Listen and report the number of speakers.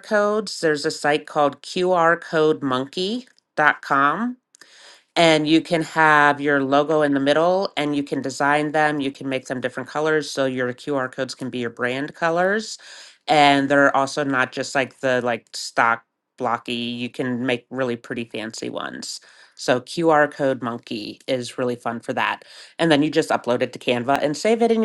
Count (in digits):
1